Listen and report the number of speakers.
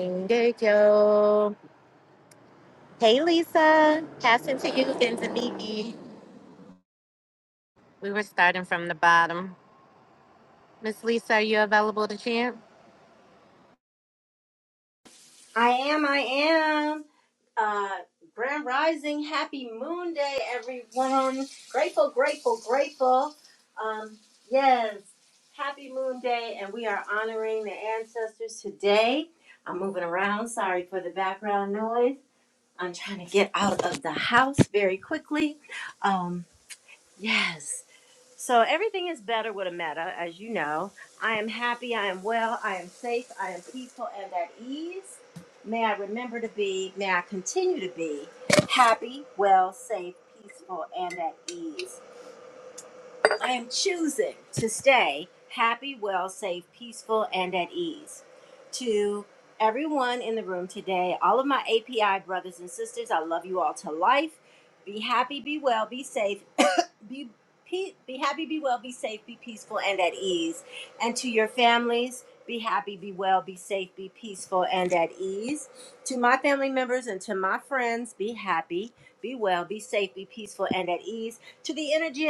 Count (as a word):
two